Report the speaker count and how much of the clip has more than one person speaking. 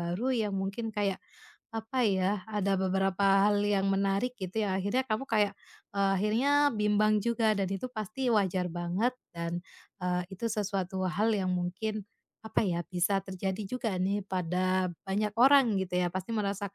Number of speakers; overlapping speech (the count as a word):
one, no overlap